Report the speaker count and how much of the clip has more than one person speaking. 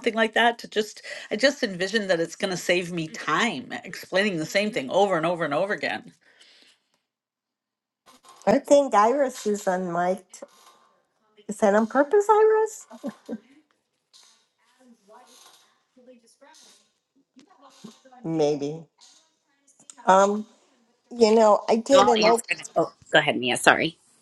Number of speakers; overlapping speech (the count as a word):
three, about 2%